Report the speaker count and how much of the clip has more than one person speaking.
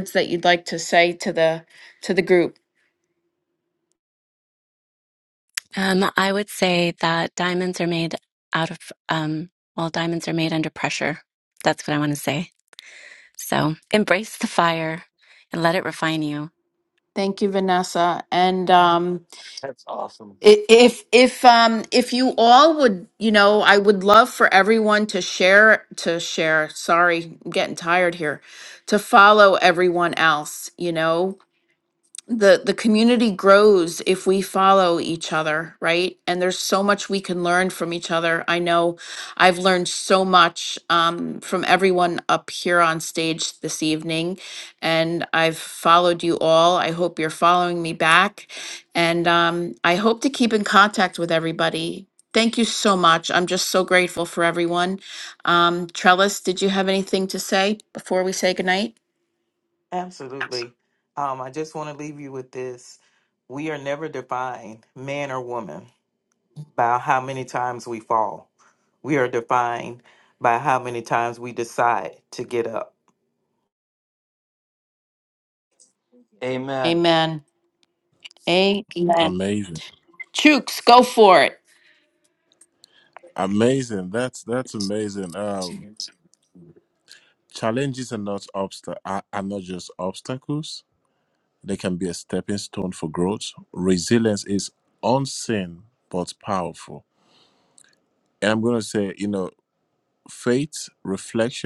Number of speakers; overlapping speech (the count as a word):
five, under 1%